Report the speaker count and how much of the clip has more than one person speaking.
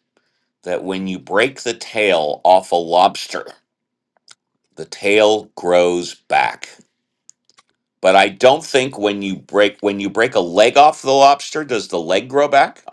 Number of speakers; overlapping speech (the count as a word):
one, no overlap